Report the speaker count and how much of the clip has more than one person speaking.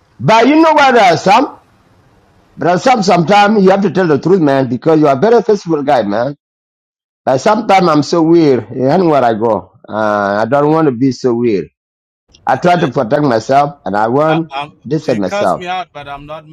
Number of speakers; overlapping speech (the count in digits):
2, about 7%